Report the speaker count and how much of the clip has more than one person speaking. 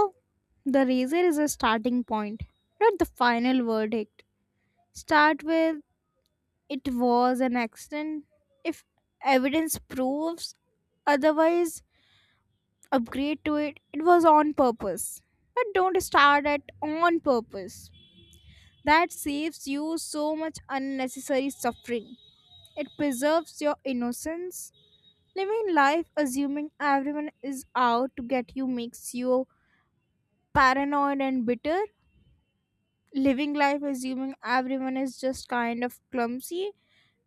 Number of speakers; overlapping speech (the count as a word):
one, no overlap